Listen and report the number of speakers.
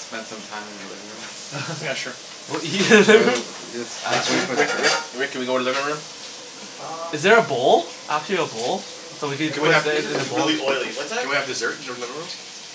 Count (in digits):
4